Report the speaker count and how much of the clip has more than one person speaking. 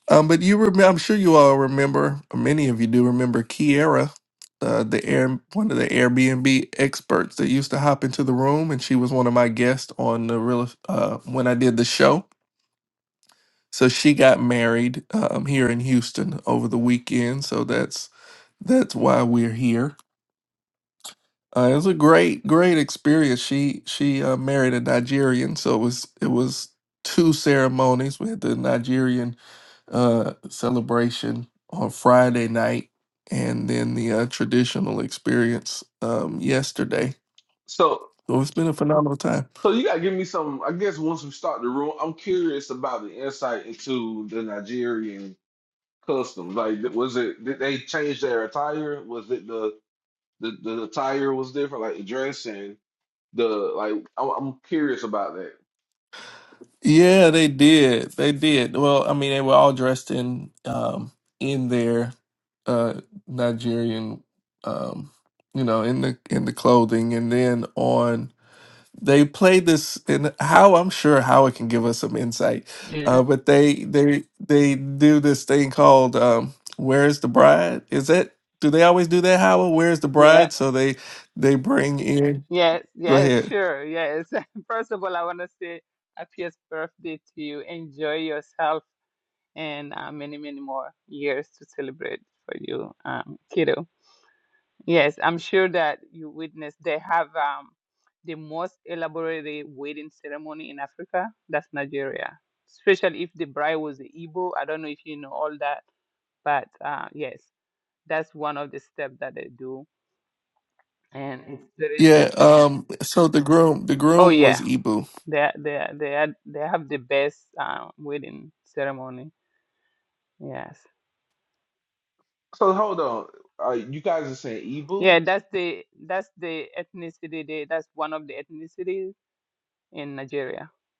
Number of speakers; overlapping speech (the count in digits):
3, about 2%